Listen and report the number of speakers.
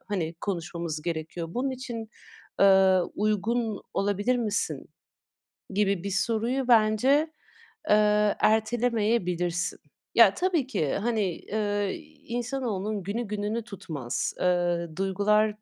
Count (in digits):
1